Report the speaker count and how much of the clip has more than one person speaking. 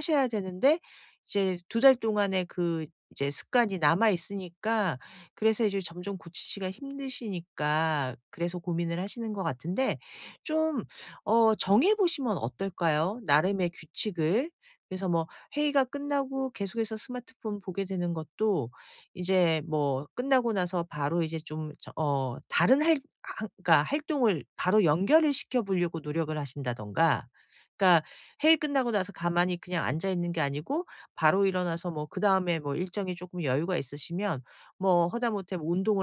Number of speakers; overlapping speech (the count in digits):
1, no overlap